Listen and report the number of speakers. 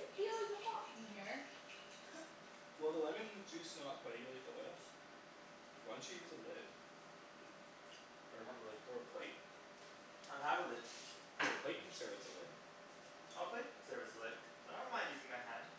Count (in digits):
3